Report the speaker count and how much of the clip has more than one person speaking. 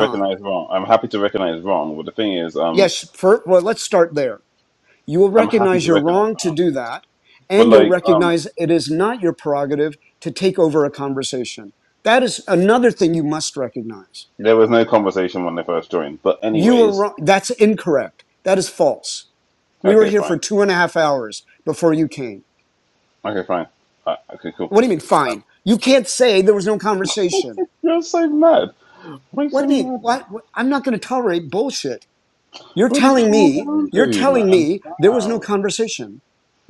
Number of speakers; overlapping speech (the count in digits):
2, about 17%